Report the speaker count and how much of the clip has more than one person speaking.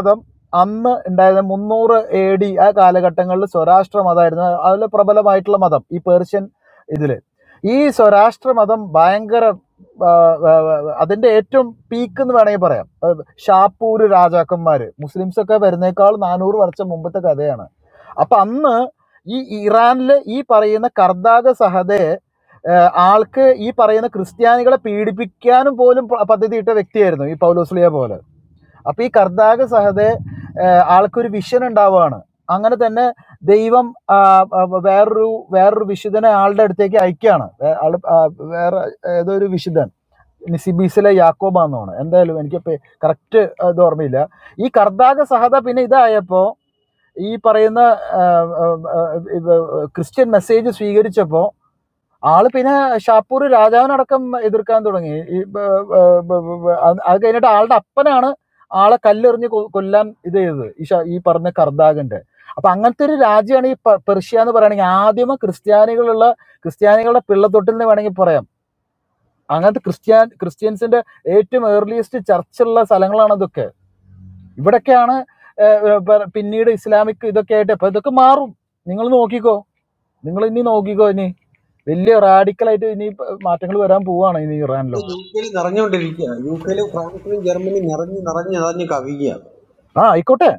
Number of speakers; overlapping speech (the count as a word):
two, under 1%